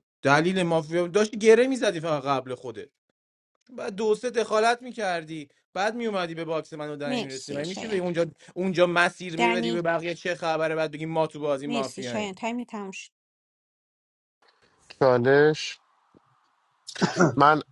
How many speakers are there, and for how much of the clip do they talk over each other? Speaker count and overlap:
3, about 11%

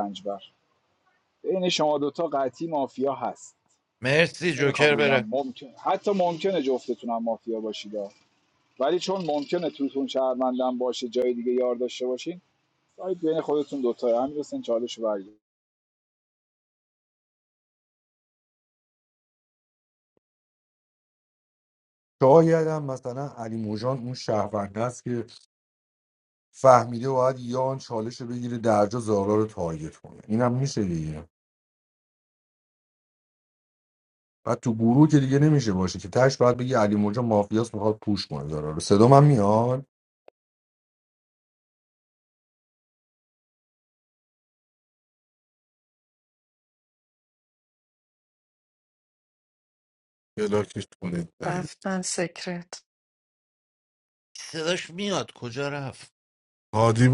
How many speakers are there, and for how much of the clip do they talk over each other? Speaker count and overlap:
5, about 2%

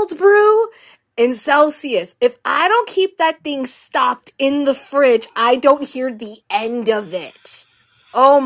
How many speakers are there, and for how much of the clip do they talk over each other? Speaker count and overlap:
1, no overlap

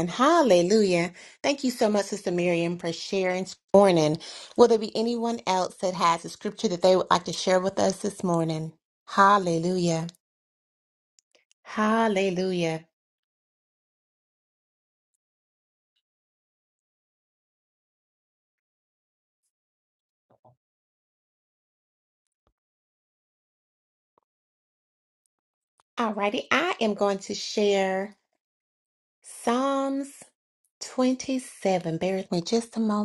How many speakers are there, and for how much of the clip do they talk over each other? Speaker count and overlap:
1, no overlap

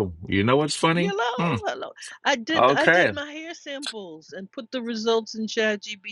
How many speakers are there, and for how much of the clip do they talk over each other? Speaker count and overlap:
2, about 21%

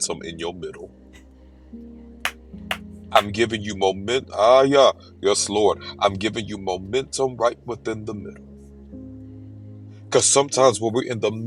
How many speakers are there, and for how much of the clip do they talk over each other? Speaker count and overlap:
1, no overlap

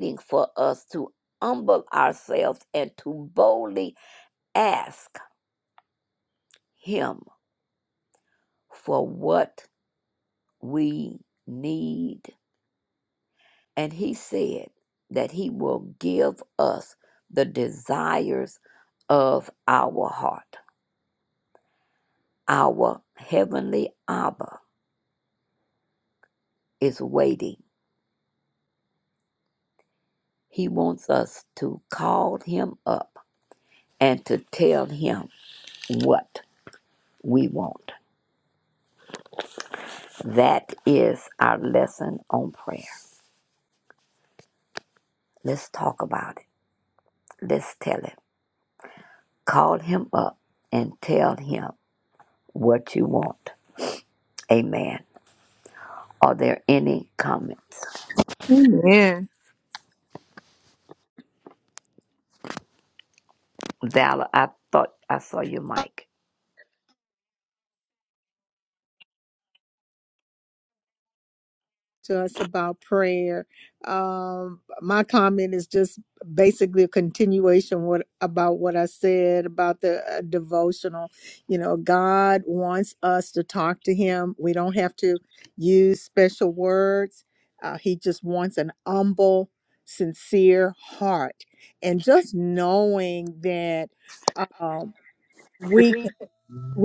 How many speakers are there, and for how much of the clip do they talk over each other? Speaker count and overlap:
2, no overlap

